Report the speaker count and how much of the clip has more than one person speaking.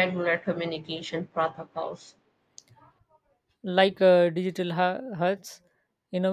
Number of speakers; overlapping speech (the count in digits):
2, no overlap